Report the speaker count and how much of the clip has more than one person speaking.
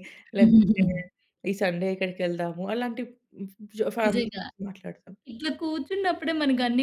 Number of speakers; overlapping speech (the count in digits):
2, about 14%